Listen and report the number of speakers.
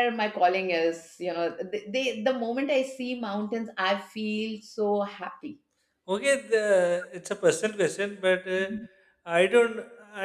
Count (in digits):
2